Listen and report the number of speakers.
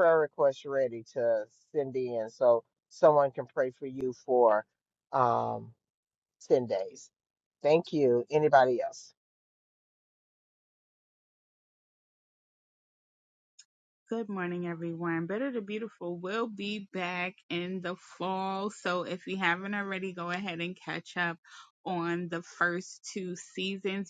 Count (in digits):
2